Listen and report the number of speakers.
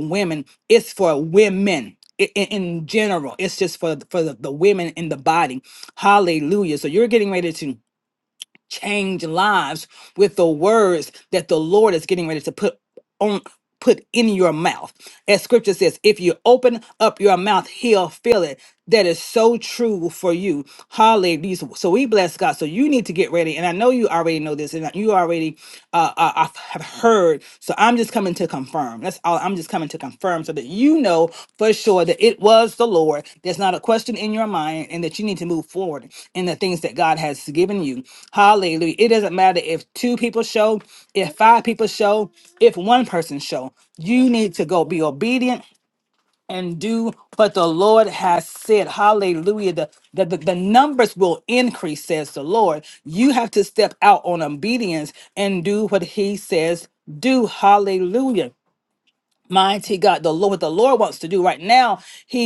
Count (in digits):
1